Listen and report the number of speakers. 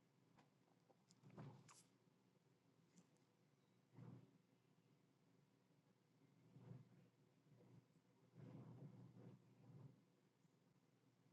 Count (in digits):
0